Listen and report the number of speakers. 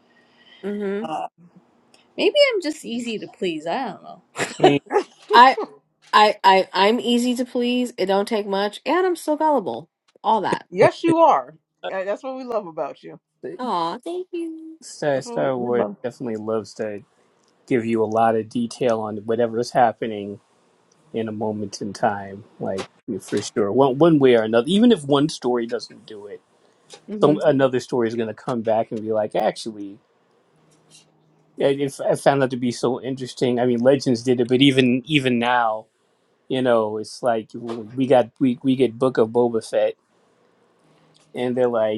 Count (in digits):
4